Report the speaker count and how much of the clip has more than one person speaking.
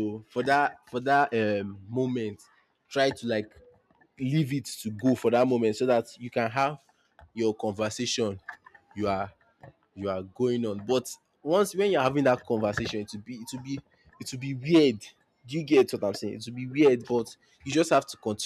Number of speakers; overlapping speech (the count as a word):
one, no overlap